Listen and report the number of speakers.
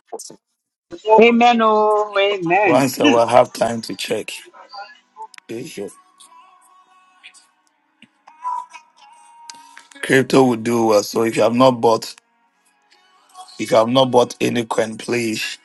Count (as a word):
two